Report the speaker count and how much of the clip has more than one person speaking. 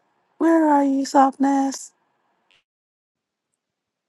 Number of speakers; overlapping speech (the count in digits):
1, no overlap